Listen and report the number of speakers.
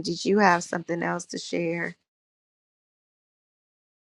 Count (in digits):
1